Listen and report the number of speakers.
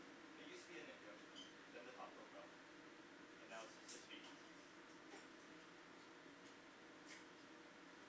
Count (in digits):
1